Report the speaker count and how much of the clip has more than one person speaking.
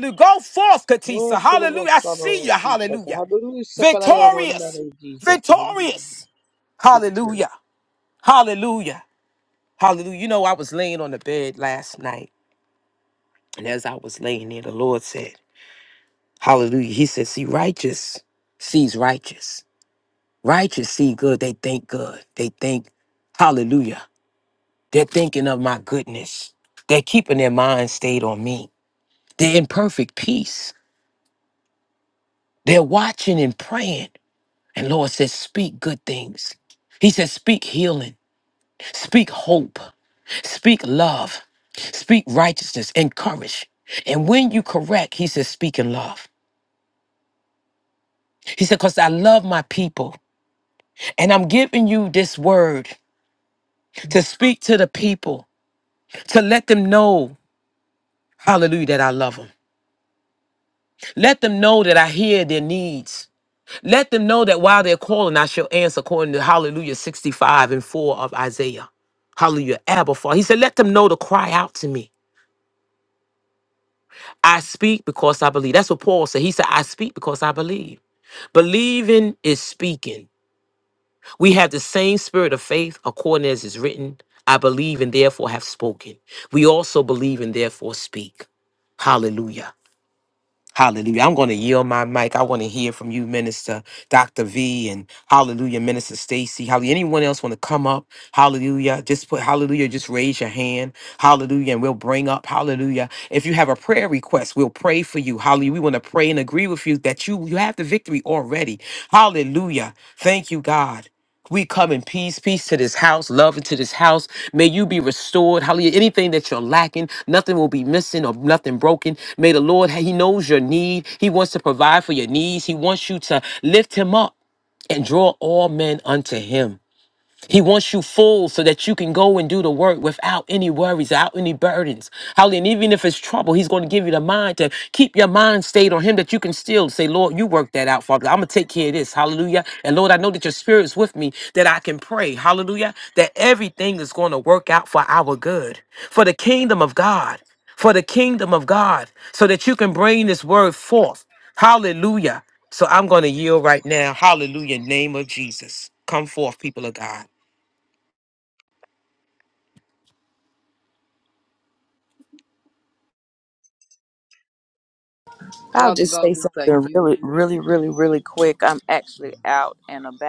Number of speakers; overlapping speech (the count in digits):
3, about 3%